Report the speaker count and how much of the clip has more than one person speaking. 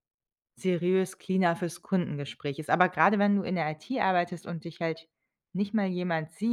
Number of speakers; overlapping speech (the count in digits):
1, no overlap